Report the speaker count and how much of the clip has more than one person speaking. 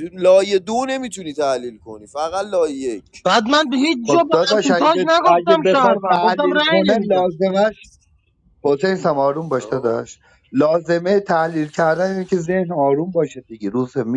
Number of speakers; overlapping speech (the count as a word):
three, about 25%